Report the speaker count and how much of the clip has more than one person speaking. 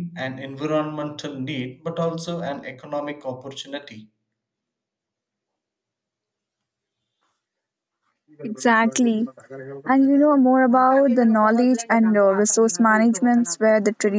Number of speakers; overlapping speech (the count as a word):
two, no overlap